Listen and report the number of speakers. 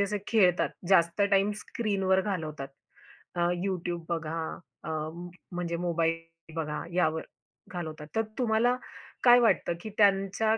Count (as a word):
one